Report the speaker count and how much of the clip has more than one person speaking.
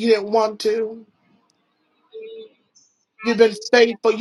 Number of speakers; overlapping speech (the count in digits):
2, about 18%